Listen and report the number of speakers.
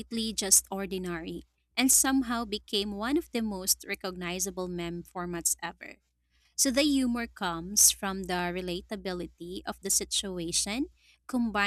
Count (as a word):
one